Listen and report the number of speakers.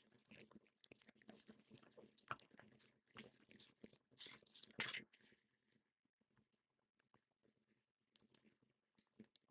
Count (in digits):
0